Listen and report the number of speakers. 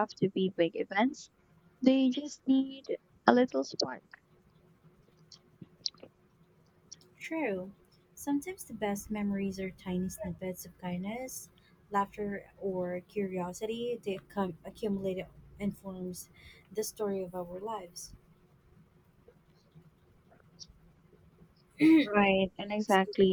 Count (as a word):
two